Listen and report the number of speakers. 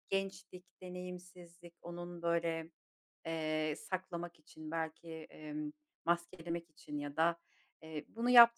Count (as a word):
one